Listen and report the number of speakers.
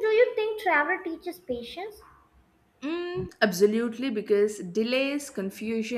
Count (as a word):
two